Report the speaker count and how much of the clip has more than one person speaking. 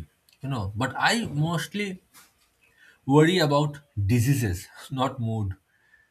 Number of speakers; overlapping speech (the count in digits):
1, no overlap